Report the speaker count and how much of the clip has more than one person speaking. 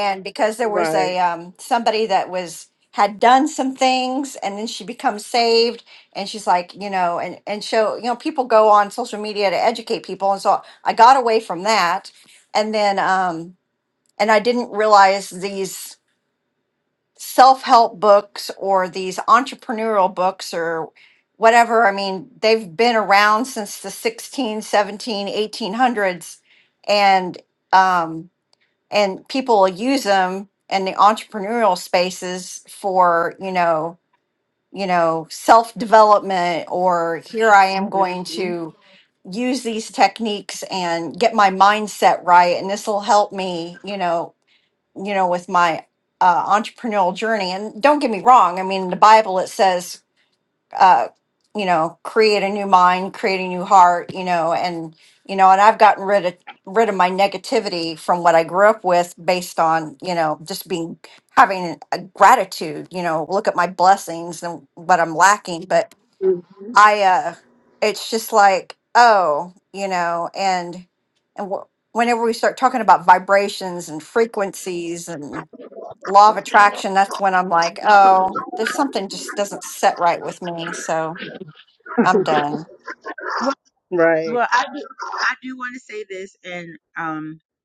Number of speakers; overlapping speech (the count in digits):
3, about 1%